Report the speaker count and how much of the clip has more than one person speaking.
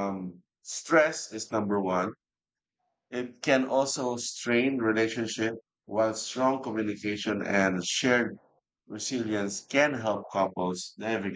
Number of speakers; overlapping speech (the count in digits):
1, no overlap